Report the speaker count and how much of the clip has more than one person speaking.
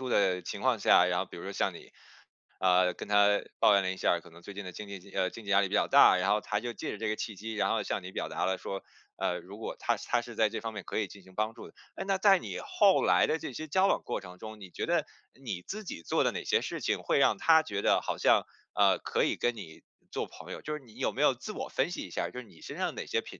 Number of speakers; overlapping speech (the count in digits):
1, no overlap